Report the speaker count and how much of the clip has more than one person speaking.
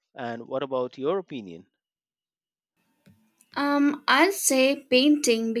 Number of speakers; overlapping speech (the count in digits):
2, no overlap